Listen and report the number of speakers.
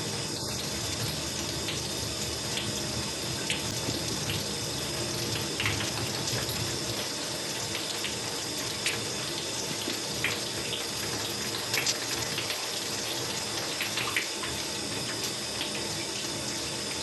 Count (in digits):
0